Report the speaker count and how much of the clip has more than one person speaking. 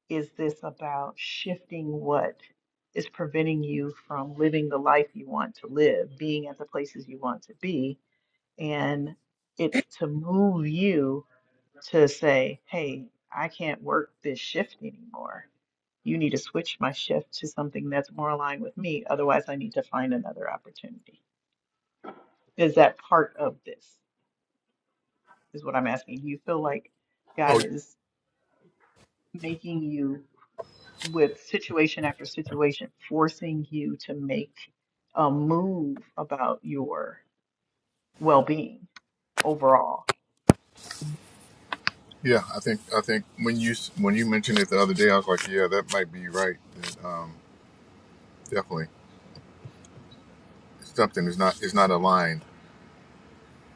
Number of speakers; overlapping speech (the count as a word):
two, under 1%